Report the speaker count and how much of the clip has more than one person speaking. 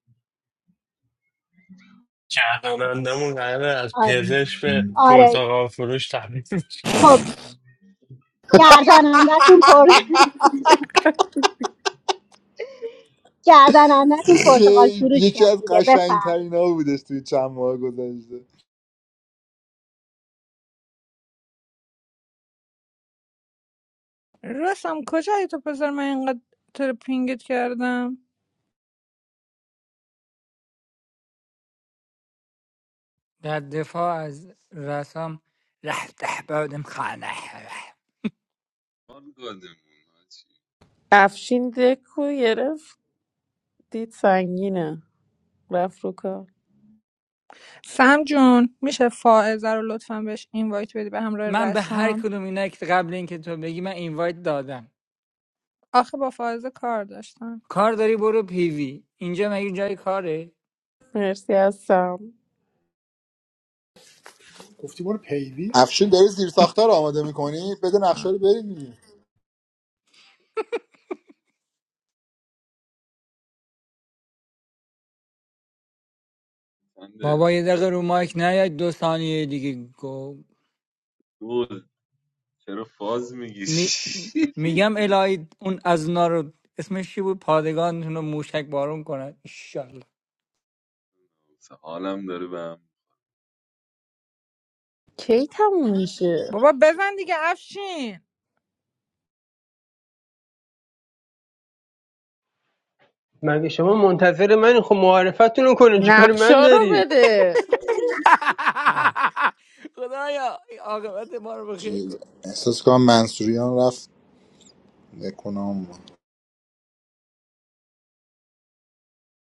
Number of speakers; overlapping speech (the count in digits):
9, about 4%